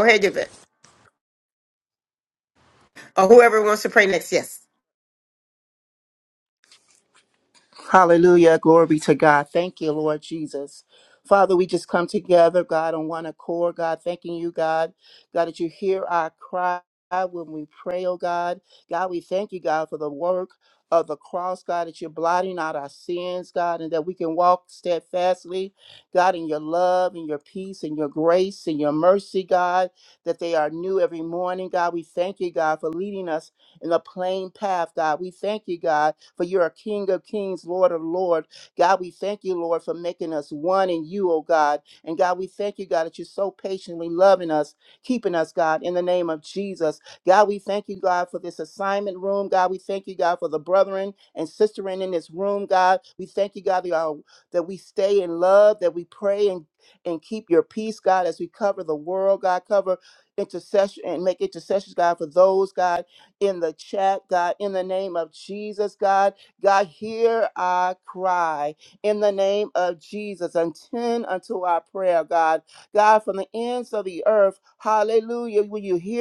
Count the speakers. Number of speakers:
2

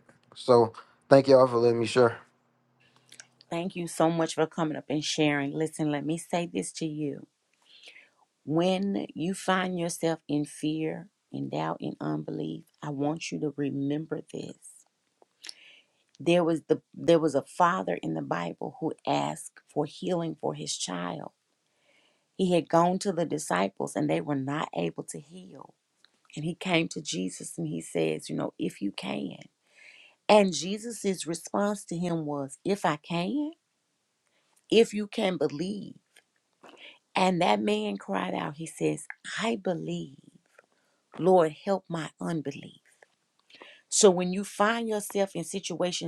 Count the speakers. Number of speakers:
2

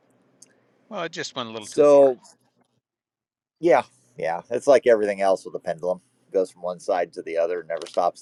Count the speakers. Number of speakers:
2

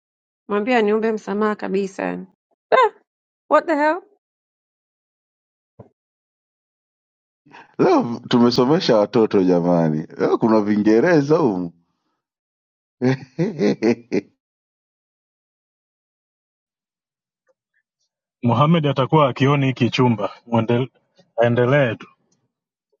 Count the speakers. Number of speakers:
3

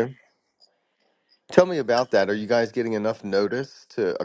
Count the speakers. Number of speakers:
1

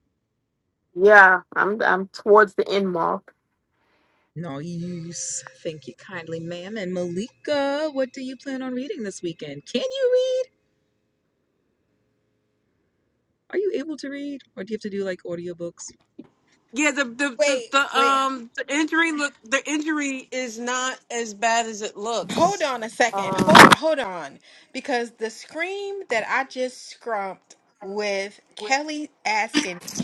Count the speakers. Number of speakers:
4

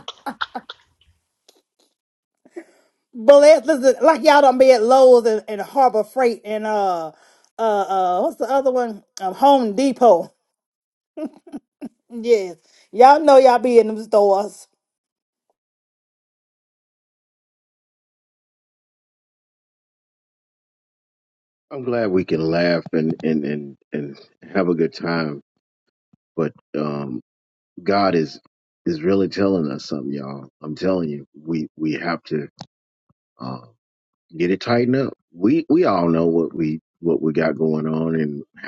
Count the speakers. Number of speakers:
2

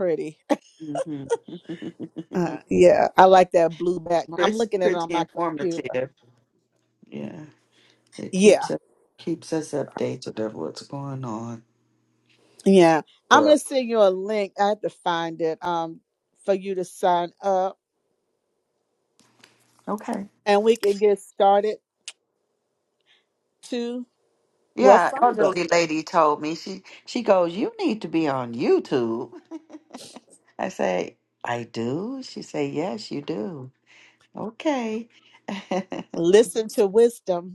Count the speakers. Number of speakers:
2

